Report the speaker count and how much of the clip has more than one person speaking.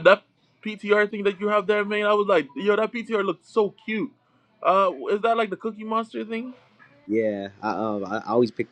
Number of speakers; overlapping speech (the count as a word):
two, no overlap